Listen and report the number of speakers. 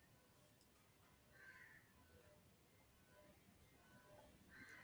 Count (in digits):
0